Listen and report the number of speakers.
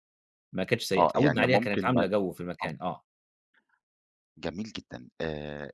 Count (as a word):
two